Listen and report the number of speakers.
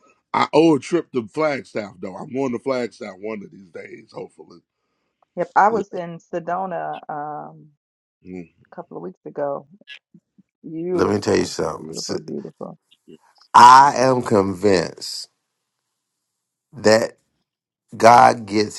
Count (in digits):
3